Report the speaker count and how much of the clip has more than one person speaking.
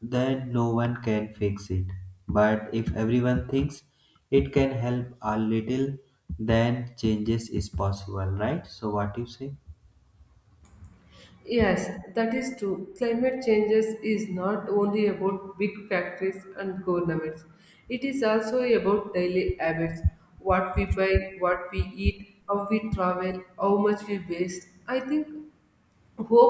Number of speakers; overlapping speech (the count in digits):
2, no overlap